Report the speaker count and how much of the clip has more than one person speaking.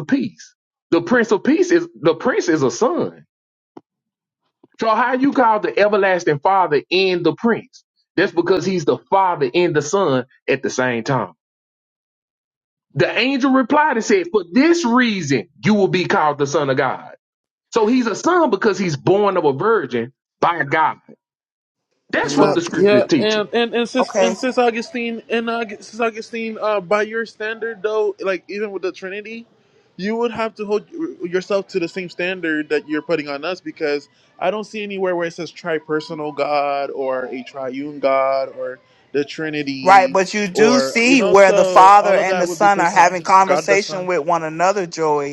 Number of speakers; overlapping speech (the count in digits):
3, about 11%